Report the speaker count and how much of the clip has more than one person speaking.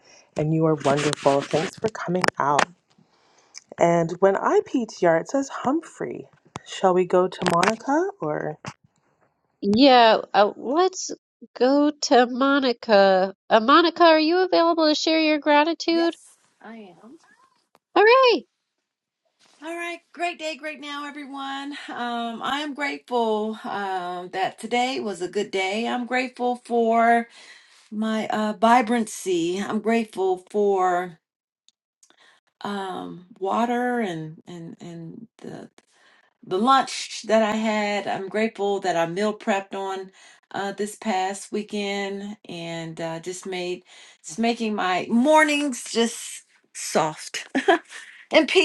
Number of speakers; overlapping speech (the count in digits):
3, under 1%